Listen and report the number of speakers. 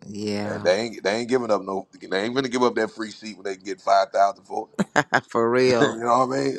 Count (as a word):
two